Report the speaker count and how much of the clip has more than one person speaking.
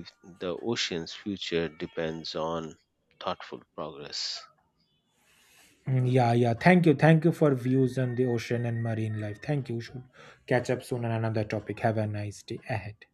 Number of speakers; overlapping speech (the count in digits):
2, no overlap